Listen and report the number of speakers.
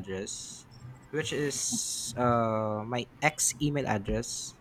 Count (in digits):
1